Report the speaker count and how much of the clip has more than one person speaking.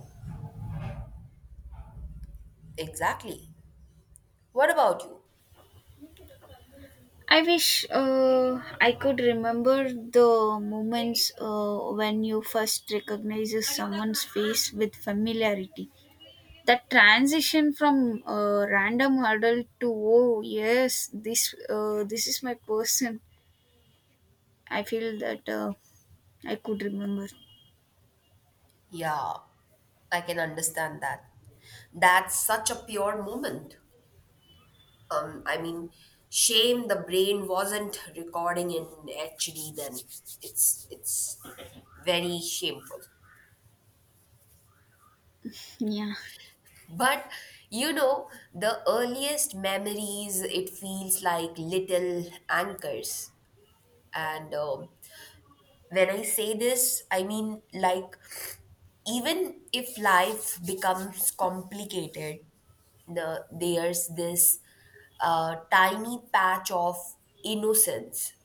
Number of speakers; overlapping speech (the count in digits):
2, no overlap